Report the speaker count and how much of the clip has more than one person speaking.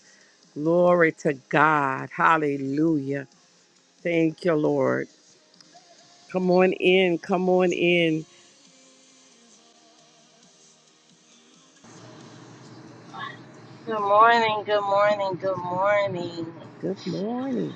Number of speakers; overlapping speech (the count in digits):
2, no overlap